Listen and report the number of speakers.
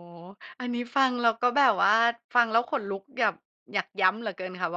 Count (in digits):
1